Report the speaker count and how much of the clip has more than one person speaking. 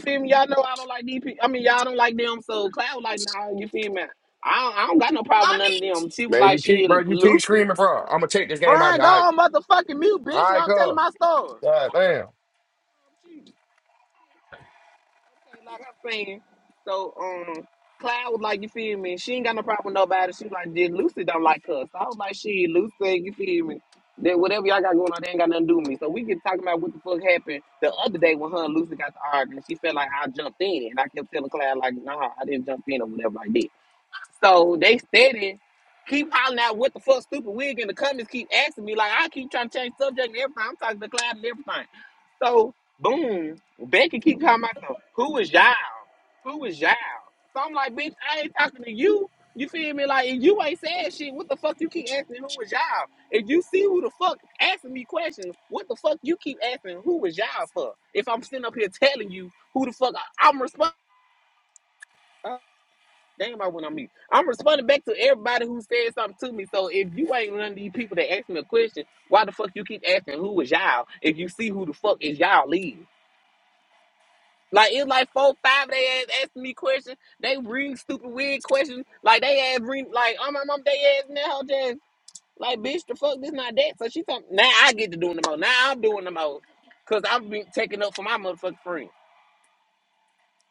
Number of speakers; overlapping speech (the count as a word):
two, about 3%